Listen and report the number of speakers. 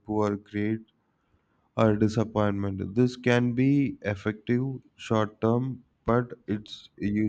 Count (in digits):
1